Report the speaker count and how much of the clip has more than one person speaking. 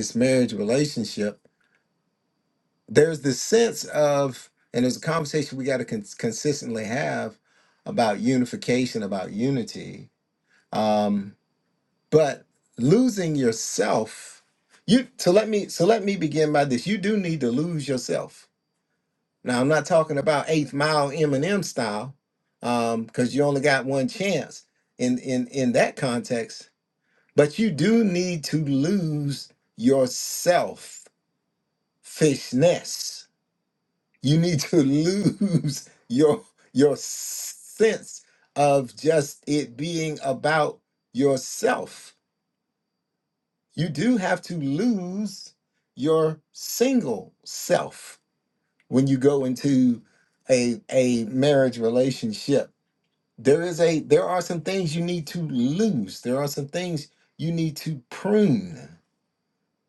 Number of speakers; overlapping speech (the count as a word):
one, no overlap